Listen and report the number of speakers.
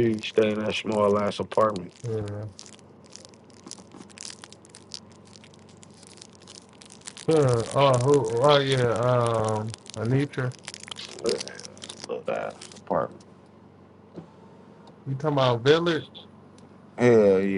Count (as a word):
two